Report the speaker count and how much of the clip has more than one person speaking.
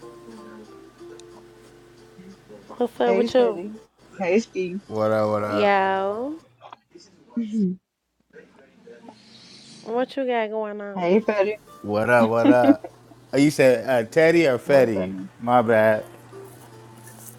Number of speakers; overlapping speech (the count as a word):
three, about 7%